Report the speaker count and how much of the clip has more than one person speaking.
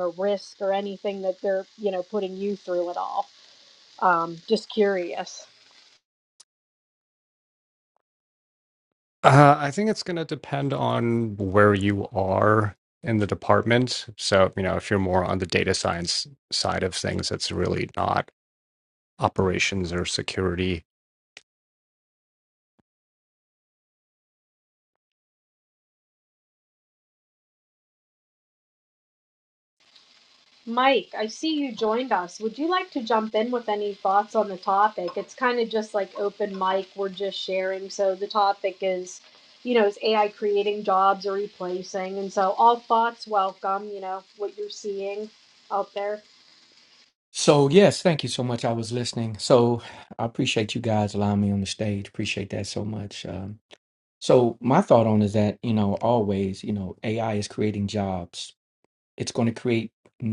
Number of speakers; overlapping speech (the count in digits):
3, no overlap